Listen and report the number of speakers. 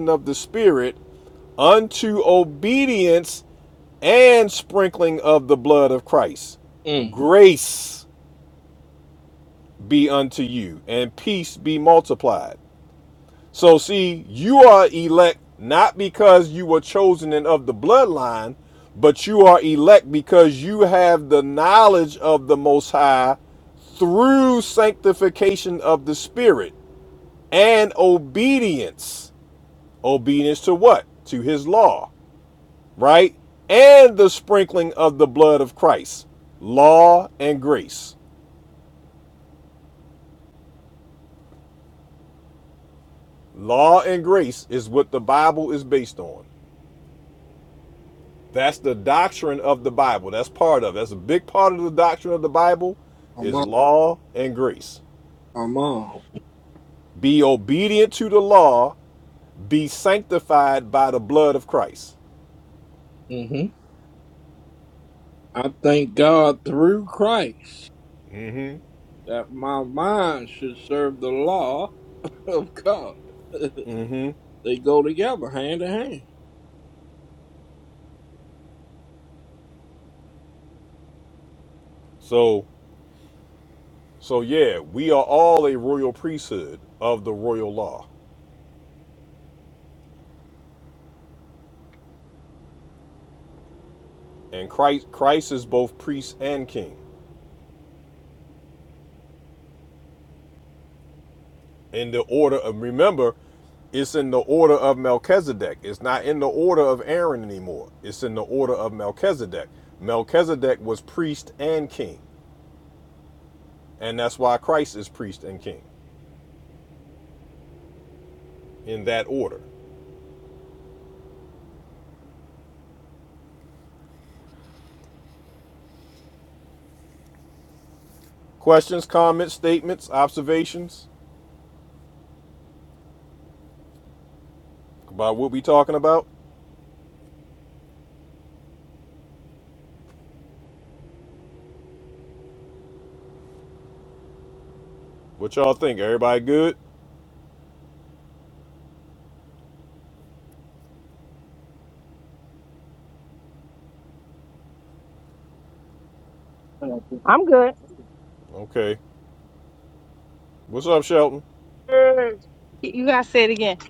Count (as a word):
three